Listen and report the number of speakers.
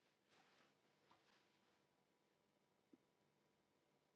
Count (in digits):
0